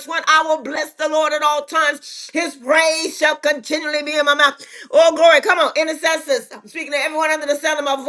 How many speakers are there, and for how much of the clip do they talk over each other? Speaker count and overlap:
one, no overlap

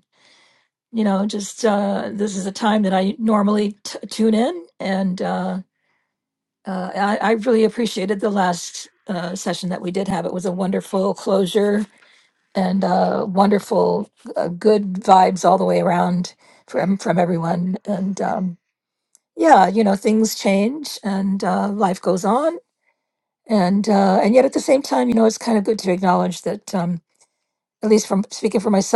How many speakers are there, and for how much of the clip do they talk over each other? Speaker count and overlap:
one, no overlap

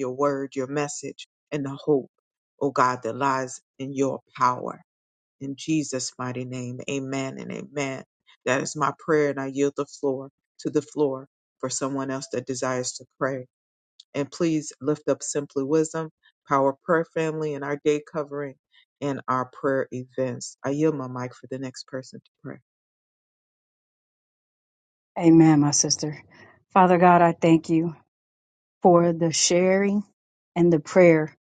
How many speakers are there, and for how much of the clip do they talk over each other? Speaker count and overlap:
two, no overlap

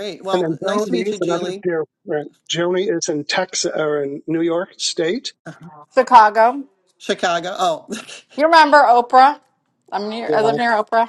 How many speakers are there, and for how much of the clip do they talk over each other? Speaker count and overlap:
three, about 14%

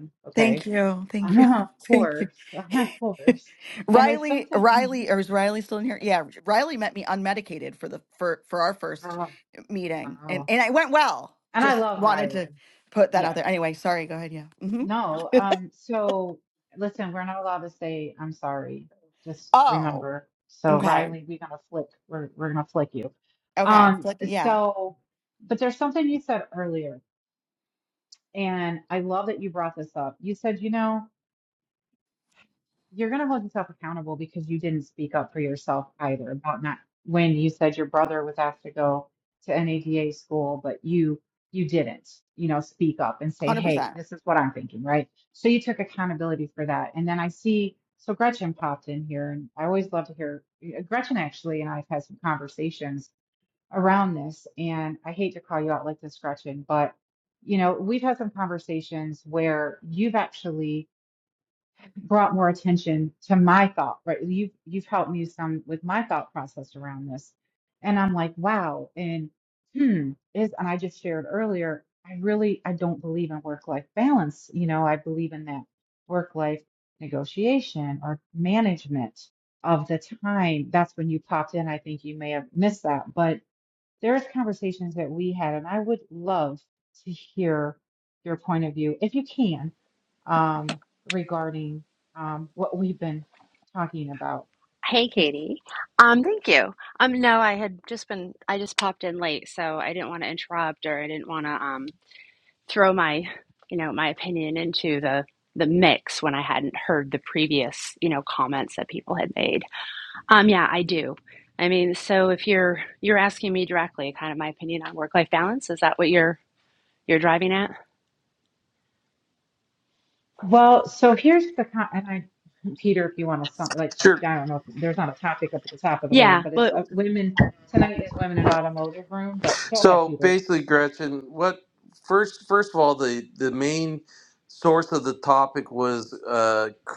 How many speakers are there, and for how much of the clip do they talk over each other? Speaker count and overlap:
four, about 5%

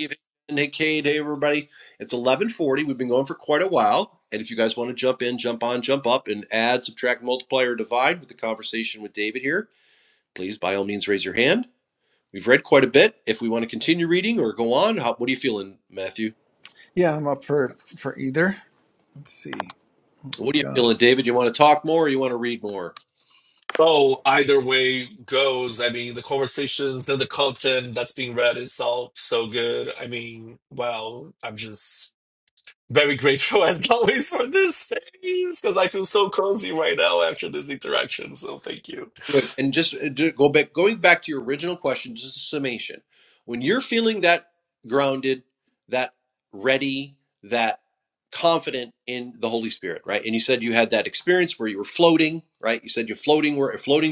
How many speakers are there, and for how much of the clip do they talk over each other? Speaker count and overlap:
three, about 1%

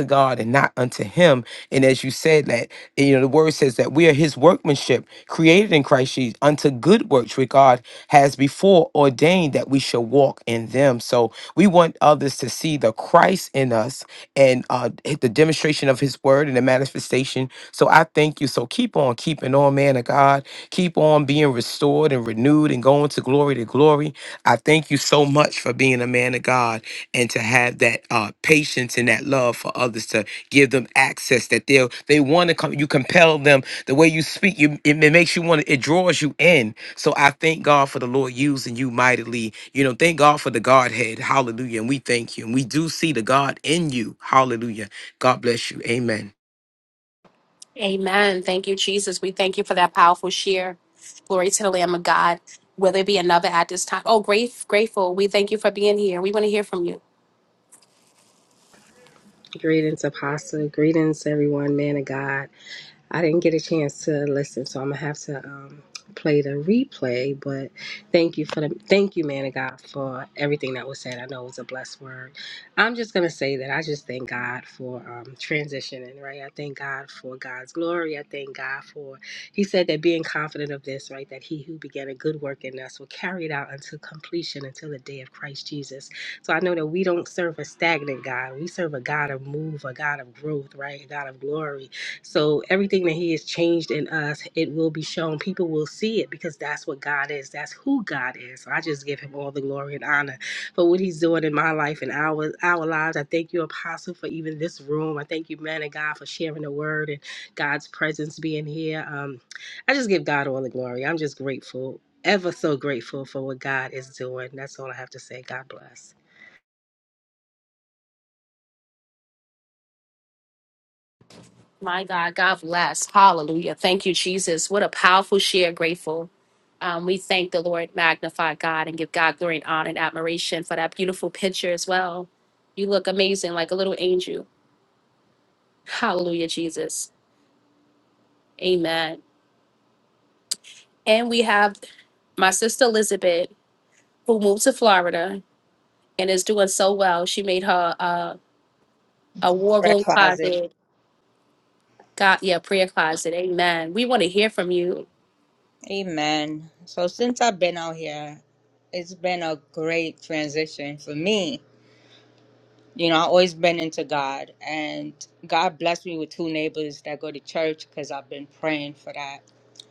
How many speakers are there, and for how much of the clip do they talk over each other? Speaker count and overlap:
four, under 1%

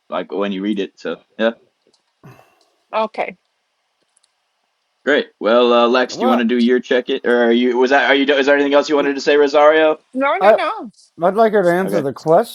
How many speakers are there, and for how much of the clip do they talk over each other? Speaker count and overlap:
three, about 5%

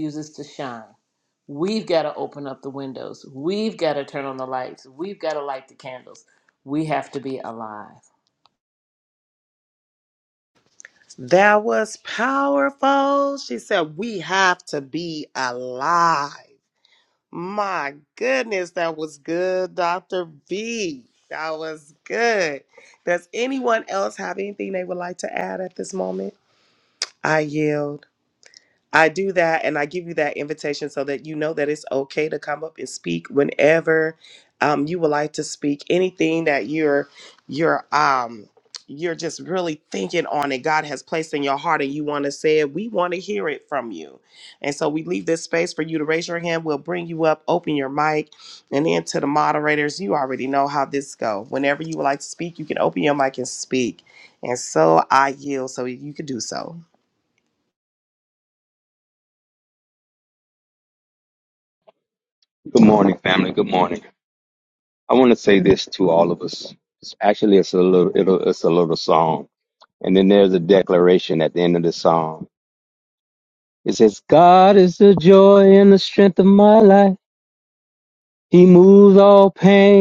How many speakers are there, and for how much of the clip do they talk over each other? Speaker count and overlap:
three, no overlap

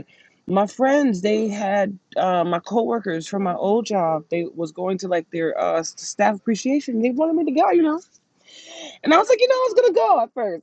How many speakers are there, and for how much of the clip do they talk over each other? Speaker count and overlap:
one, no overlap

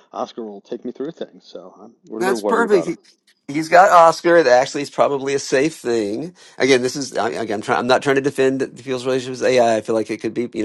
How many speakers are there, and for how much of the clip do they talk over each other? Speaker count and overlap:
two, about 7%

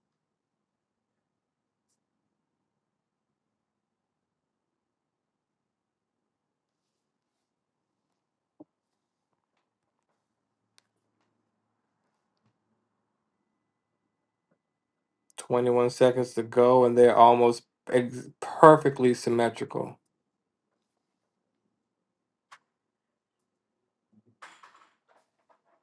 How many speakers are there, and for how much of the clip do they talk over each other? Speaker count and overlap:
one, no overlap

